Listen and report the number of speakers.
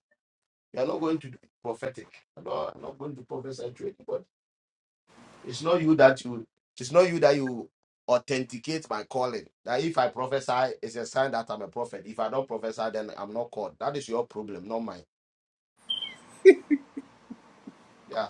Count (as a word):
one